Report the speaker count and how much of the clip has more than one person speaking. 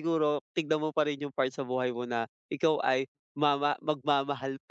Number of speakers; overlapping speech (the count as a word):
one, no overlap